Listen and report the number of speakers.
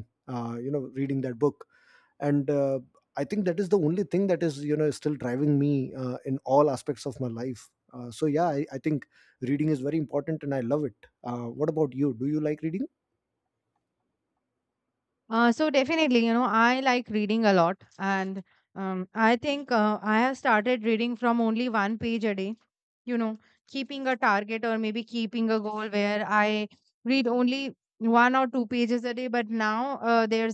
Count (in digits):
2